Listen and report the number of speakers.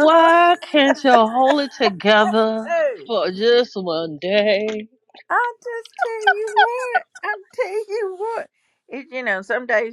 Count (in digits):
2